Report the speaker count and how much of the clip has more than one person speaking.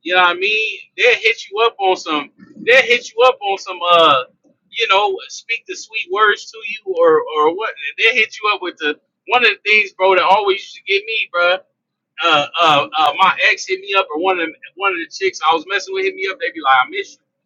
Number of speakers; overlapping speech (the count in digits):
1, no overlap